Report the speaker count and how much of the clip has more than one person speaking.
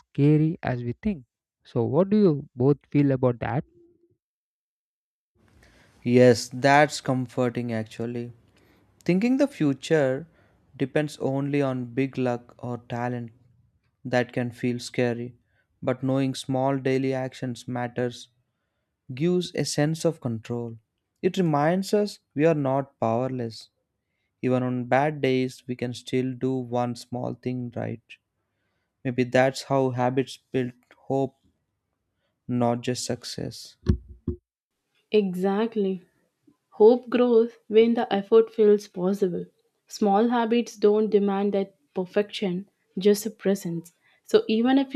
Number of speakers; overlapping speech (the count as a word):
three, no overlap